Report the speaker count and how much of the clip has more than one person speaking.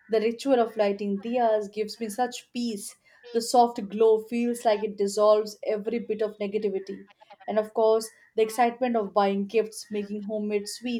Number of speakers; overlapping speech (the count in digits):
1, no overlap